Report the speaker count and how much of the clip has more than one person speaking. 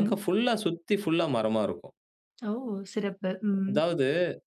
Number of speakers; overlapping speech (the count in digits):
2, about 9%